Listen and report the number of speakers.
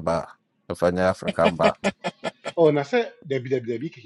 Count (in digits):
2